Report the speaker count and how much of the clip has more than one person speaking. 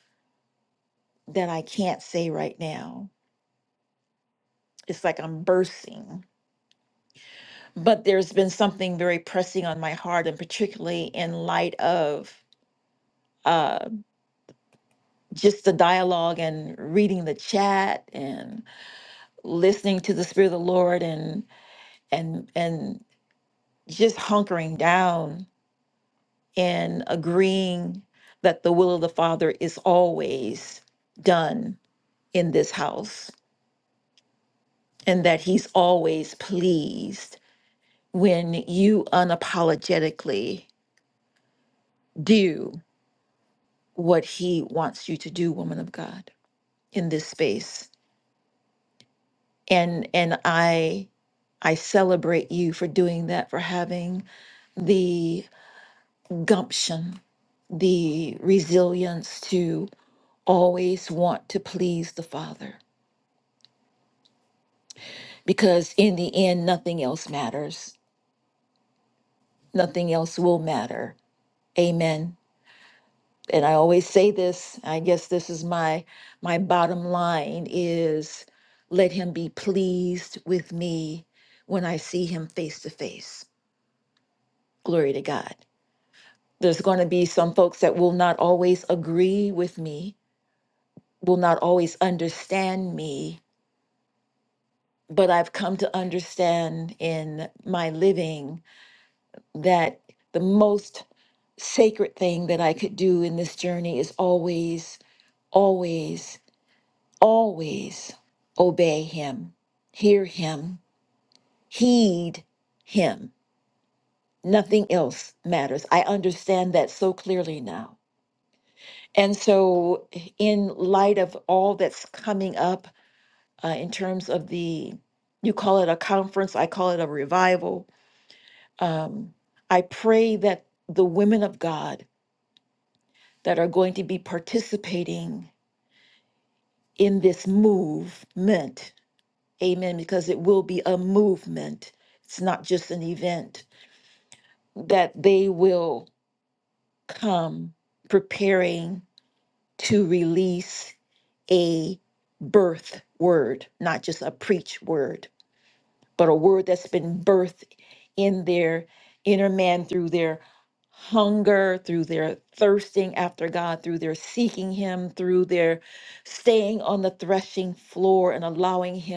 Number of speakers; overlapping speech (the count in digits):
1, no overlap